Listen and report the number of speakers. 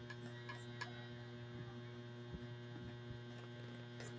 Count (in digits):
0